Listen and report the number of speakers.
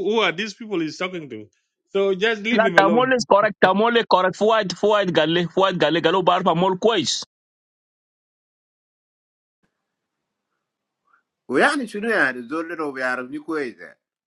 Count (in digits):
3